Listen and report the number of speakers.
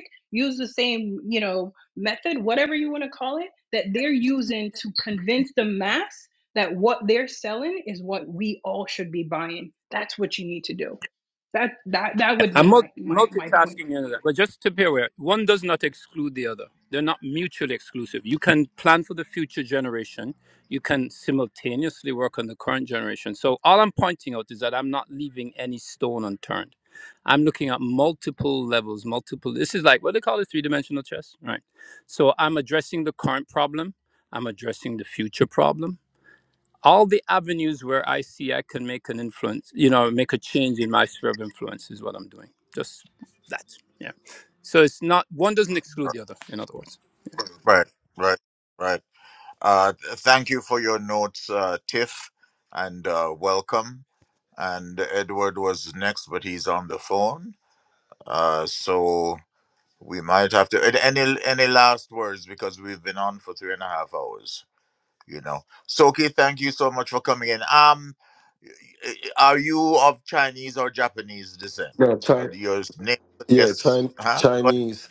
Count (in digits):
4